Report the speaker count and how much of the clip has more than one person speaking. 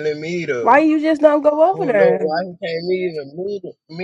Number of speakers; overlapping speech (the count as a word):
two, about 19%